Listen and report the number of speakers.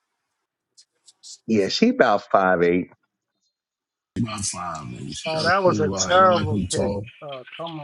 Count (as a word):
three